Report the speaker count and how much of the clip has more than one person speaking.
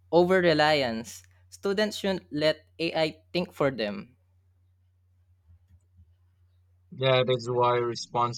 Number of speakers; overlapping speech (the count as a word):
two, no overlap